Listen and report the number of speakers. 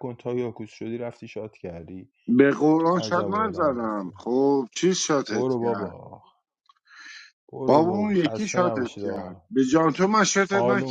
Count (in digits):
2